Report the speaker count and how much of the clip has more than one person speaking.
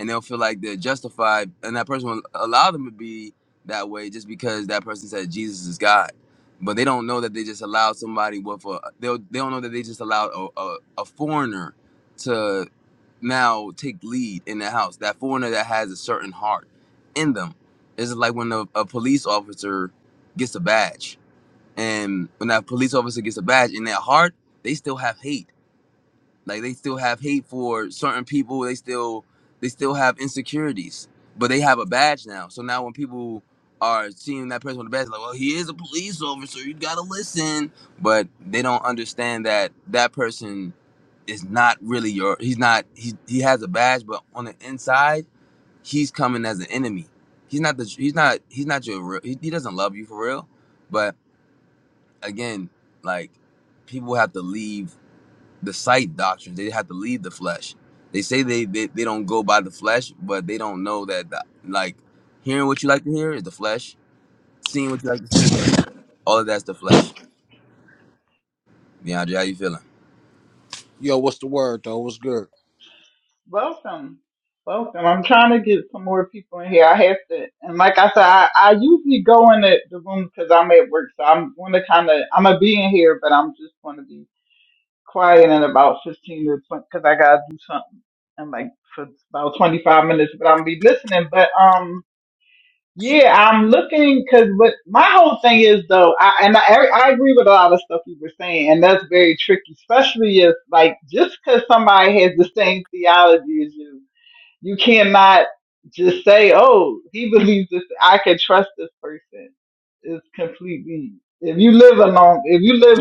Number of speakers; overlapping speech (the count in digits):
3, no overlap